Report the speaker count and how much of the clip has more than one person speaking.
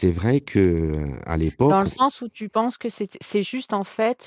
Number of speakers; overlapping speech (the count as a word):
two, about 5%